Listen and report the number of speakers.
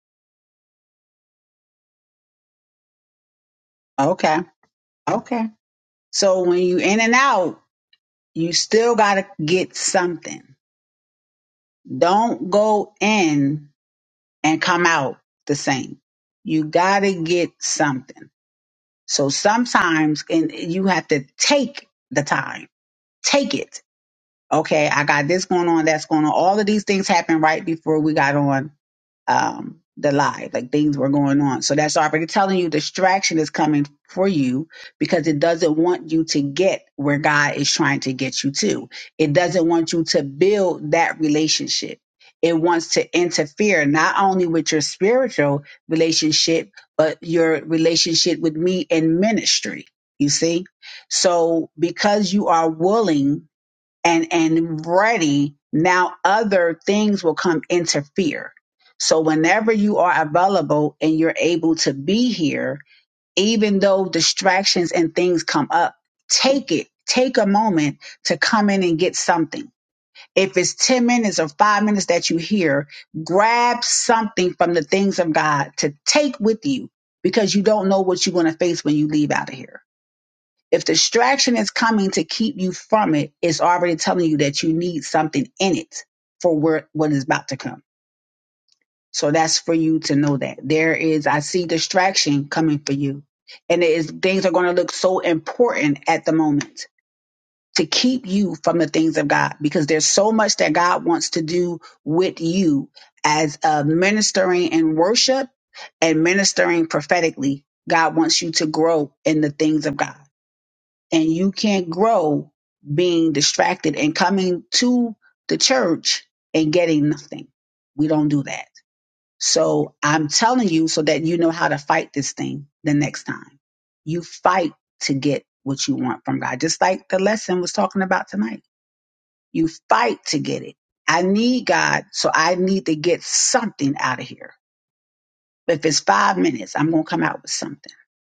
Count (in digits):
1